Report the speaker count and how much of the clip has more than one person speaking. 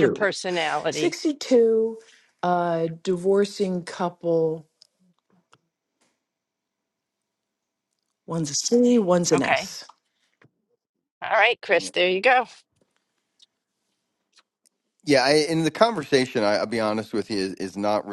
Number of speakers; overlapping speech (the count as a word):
three, about 5%